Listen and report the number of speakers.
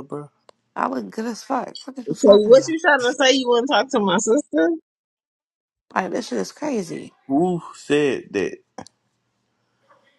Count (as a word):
three